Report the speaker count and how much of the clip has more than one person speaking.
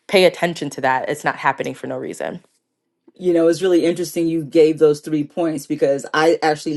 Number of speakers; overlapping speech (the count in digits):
2, no overlap